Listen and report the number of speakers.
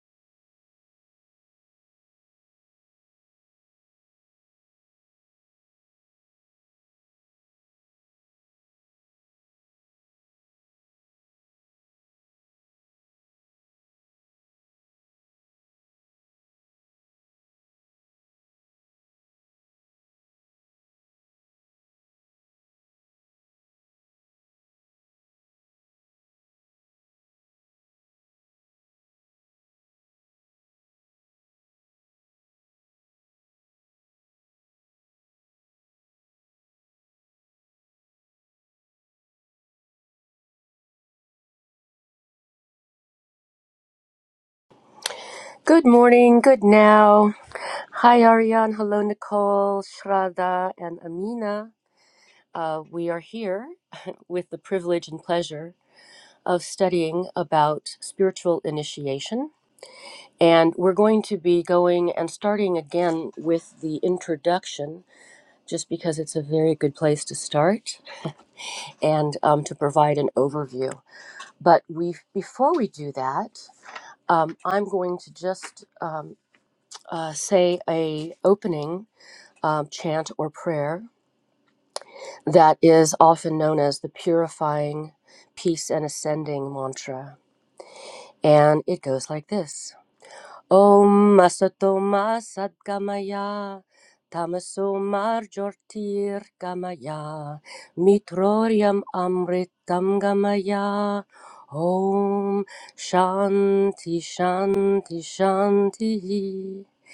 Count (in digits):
1